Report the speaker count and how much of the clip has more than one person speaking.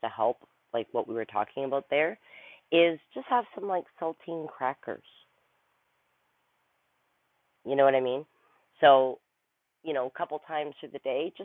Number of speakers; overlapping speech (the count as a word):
one, no overlap